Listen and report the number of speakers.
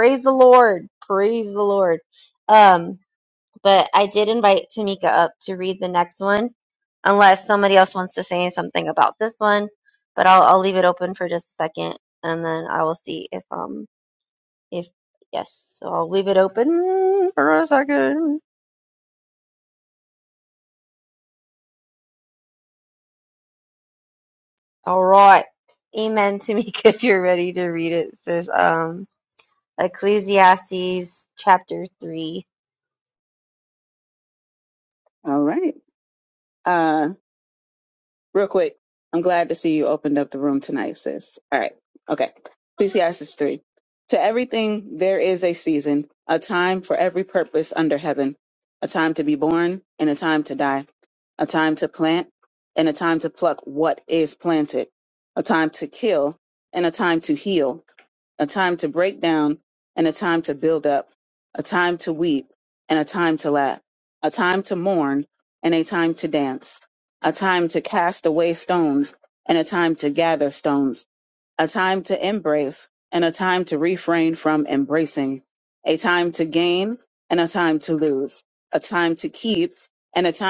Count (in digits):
2